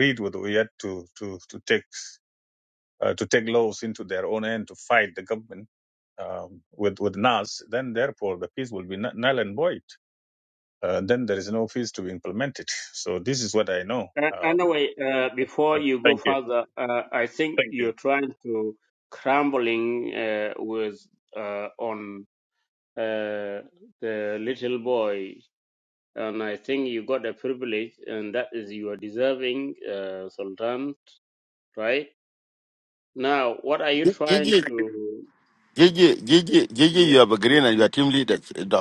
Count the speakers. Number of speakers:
three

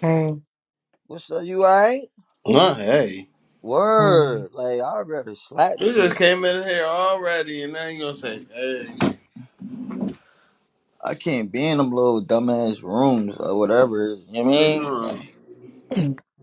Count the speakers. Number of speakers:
three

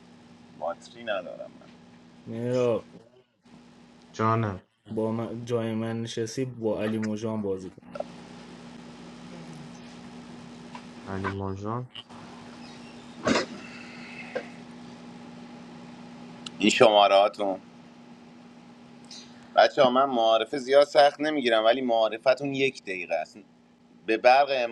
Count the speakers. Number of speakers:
three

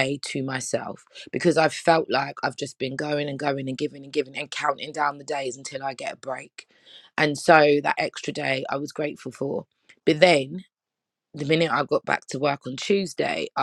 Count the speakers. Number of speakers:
one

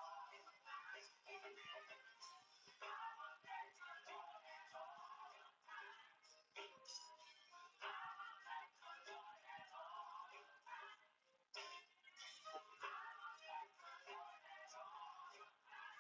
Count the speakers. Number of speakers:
zero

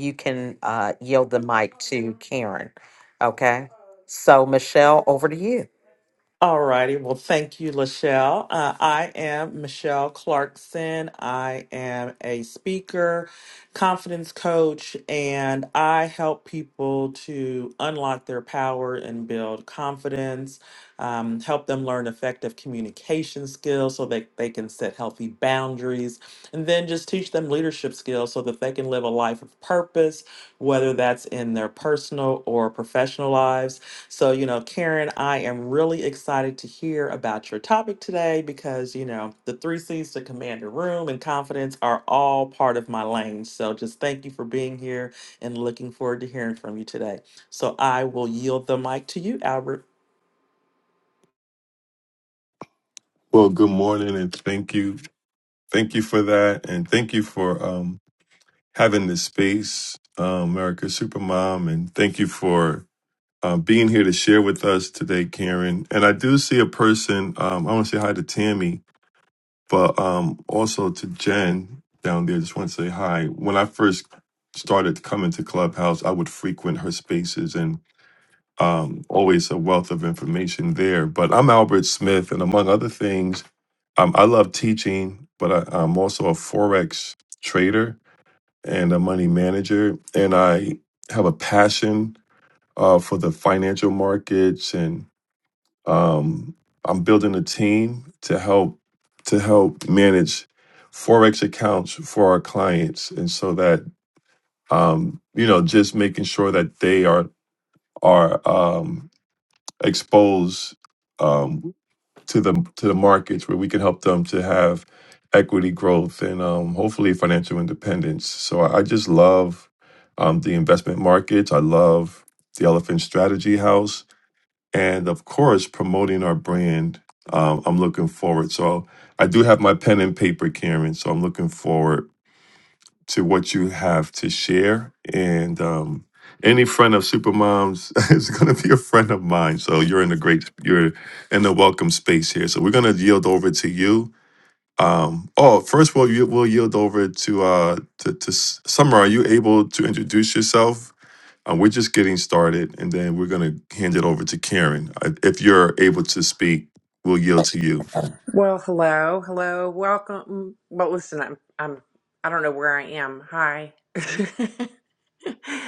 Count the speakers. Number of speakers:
four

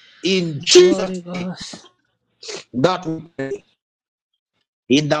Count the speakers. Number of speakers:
two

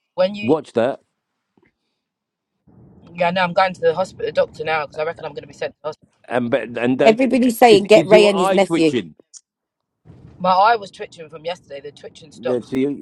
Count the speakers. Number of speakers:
three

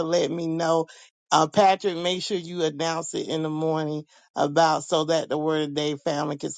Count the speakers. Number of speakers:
one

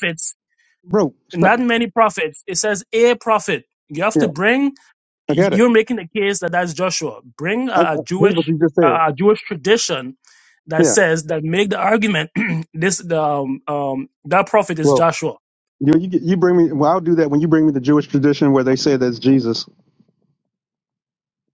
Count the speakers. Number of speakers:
two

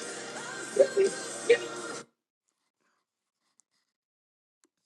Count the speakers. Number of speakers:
zero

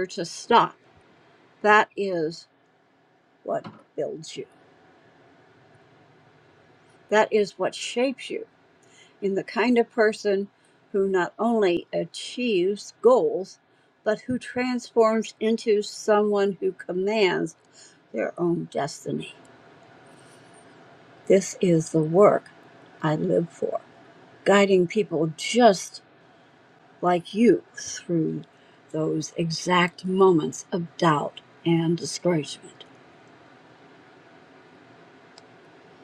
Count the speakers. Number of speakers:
one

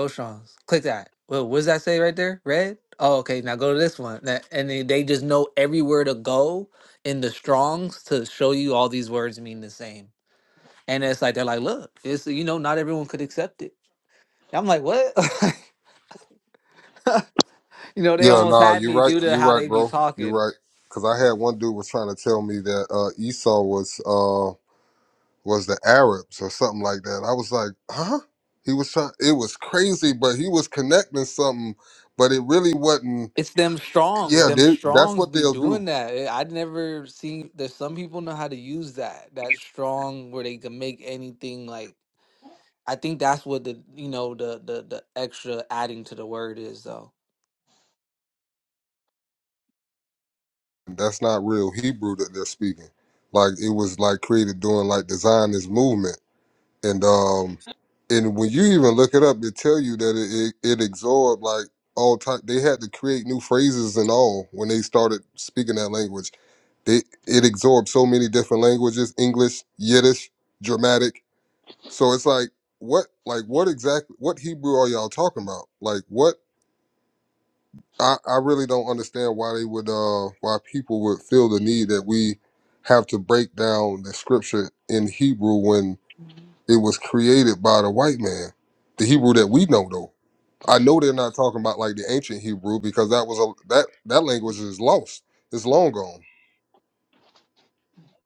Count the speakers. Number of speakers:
two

